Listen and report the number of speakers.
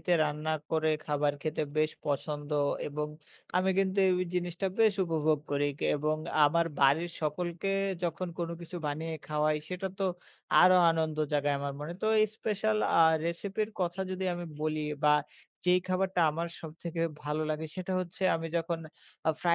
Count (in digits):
1